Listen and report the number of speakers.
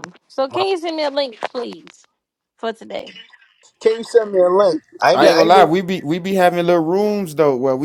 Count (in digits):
3